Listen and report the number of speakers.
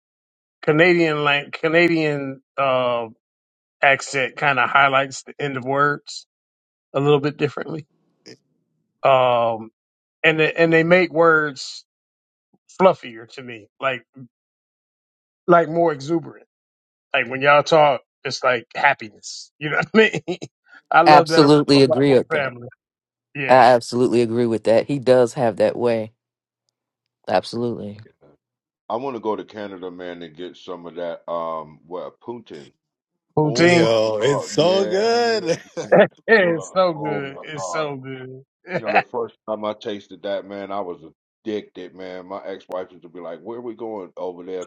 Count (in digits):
4